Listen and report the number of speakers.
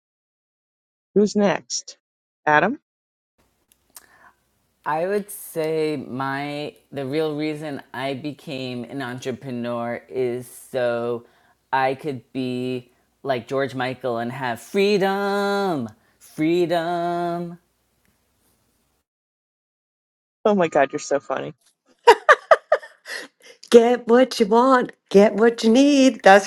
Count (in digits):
3